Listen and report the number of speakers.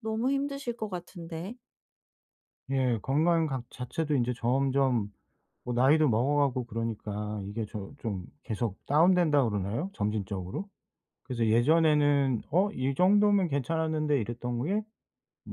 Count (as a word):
two